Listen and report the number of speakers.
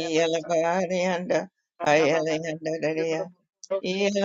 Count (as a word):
two